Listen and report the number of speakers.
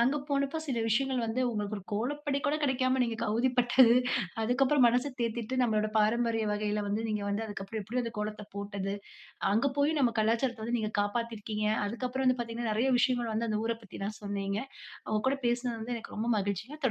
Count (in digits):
1